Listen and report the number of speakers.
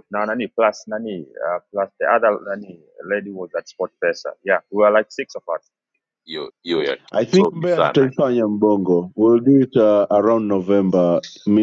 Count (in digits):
3